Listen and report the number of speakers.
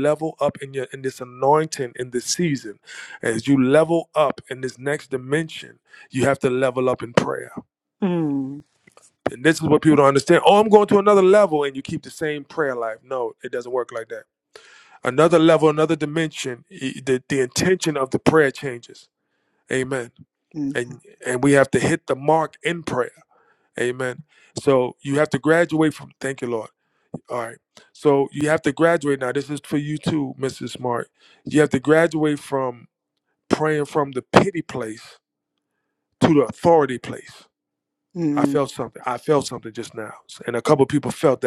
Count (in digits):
2